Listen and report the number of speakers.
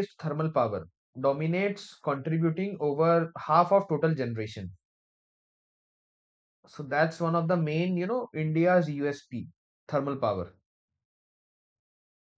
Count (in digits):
1